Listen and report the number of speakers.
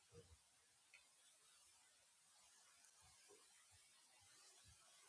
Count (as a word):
zero